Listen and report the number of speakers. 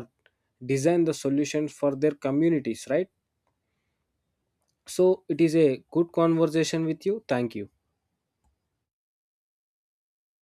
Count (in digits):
1